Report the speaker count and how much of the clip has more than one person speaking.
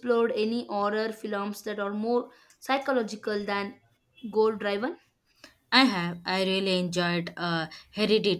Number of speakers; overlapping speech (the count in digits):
2, no overlap